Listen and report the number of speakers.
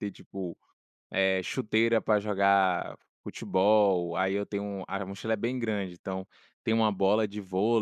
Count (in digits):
1